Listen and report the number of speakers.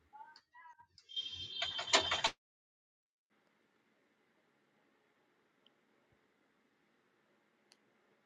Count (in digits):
0